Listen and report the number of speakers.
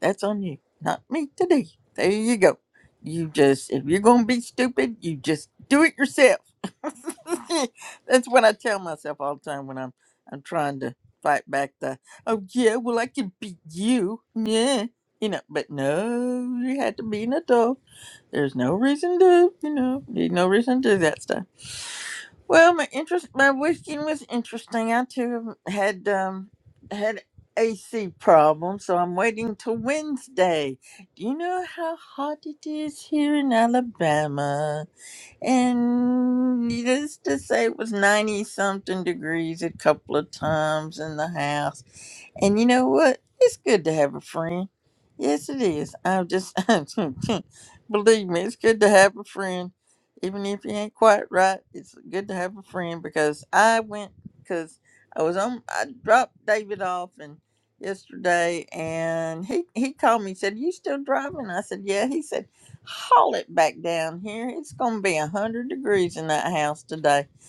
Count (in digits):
1